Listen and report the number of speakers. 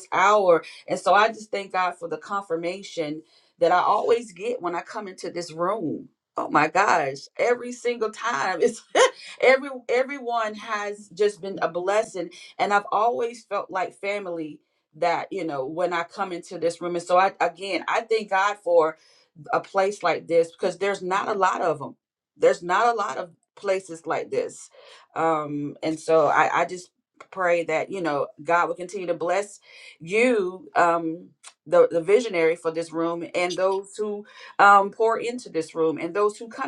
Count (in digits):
1